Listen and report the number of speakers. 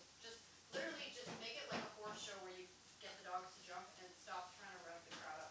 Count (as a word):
one